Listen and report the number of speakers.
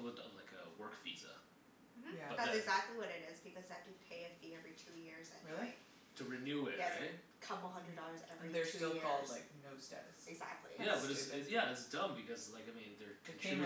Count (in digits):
3